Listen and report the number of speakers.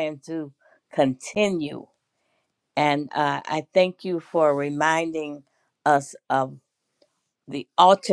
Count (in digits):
1